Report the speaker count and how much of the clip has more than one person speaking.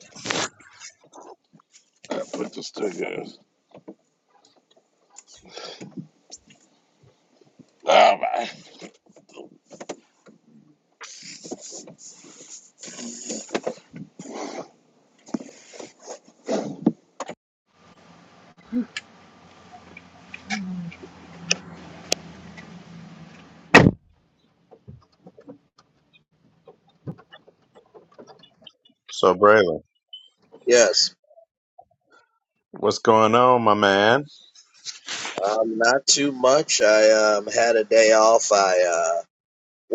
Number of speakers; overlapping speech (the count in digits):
3, no overlap